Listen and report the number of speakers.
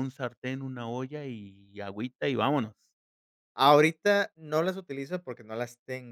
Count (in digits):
2